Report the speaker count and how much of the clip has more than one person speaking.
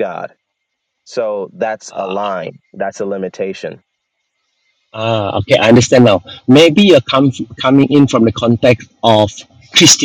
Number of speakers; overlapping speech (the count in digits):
2, about 2%